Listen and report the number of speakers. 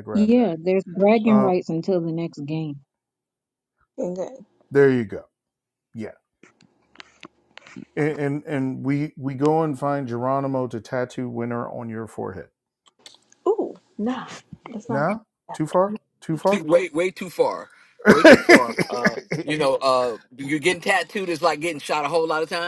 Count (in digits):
4